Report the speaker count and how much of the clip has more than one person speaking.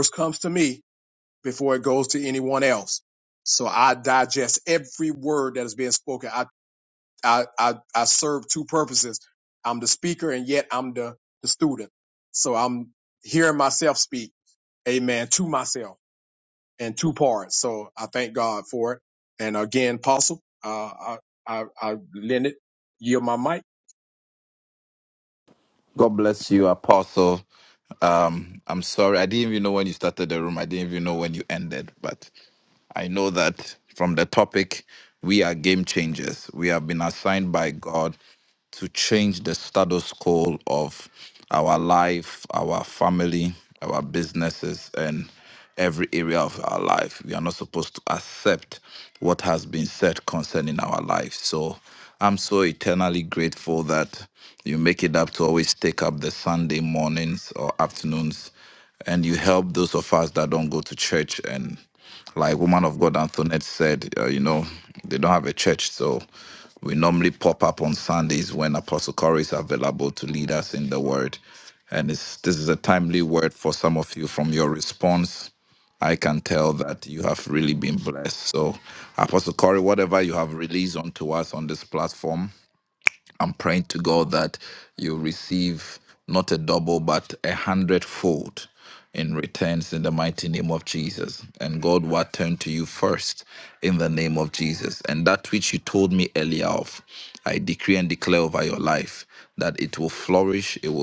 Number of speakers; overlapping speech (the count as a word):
two, no overlap